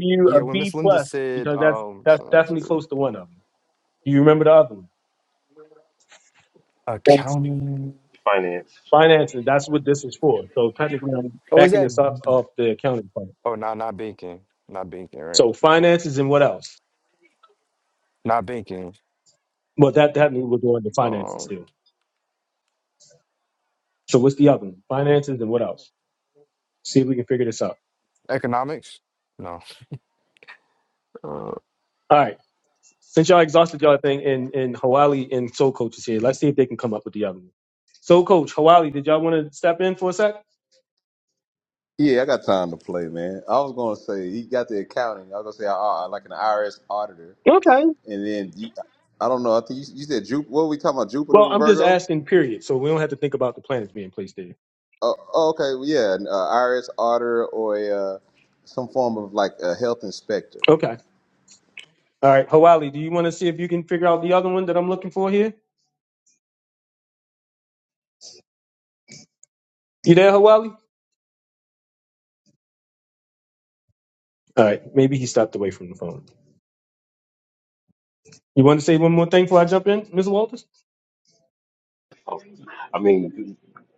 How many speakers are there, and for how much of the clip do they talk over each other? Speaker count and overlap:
four, about 6%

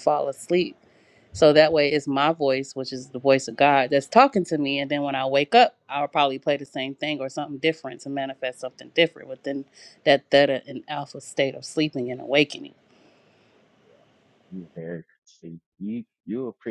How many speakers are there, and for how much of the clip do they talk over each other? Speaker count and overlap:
two, no overlap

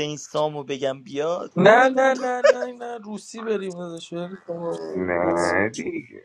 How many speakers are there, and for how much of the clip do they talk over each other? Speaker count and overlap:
three, about 7%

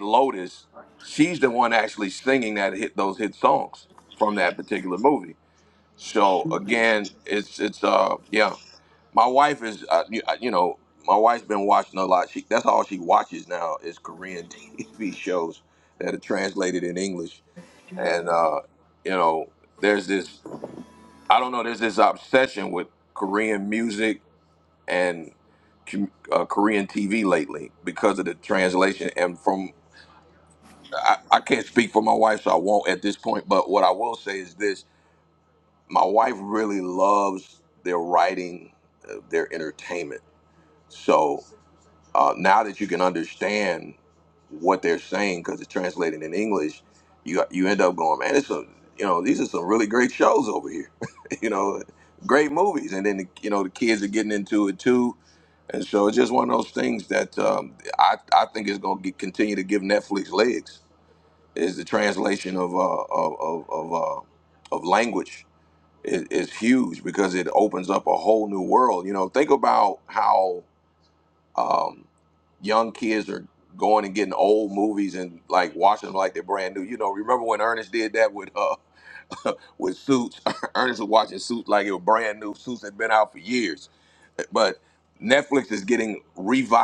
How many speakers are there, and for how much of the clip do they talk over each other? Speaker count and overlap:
one, no overlap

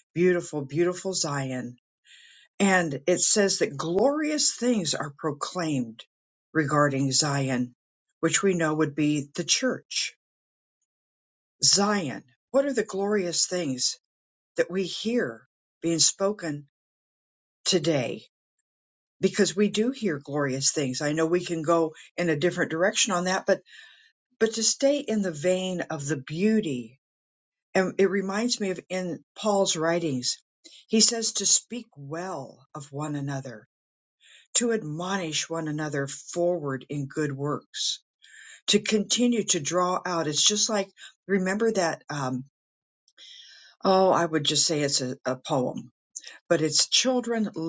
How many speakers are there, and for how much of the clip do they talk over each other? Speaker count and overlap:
one, no overlap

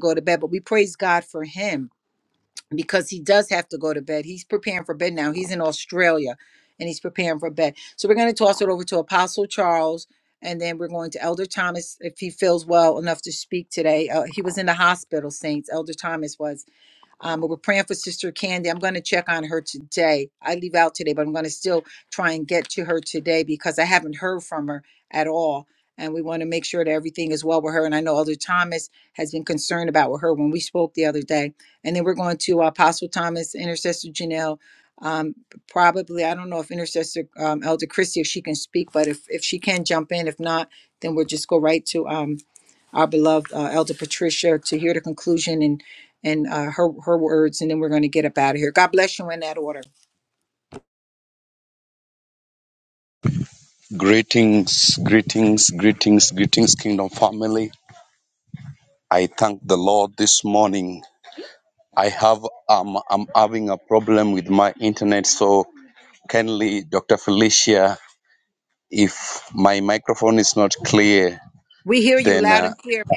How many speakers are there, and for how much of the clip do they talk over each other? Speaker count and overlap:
two, about 1%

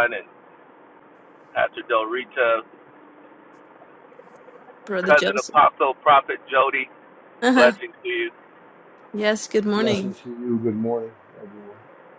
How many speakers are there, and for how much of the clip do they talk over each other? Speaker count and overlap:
three, about 8%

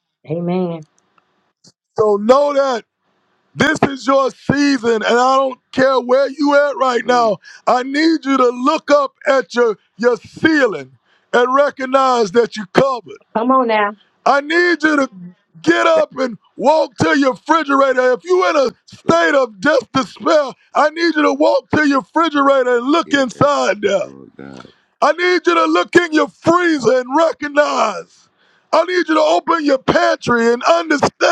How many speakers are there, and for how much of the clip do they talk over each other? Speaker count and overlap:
three, about 2%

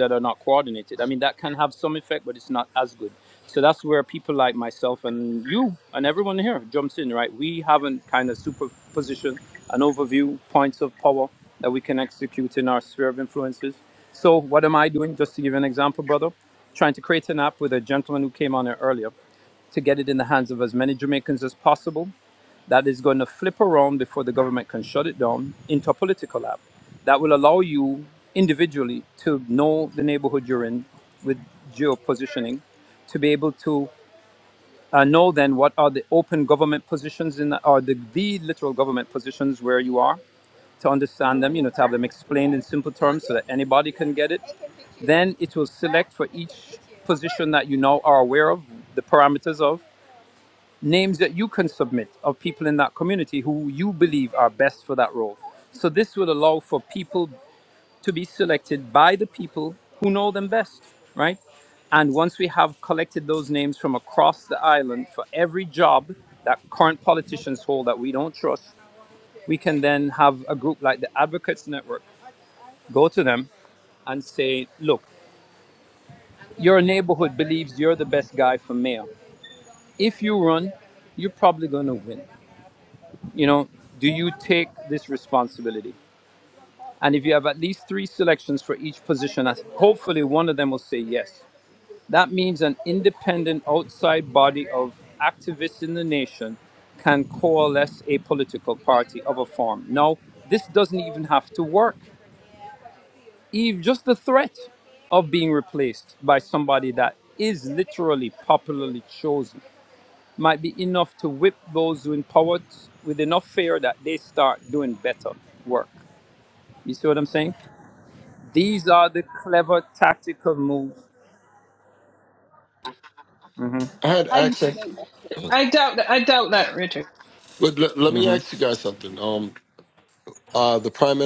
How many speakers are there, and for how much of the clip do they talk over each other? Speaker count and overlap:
three, under 1%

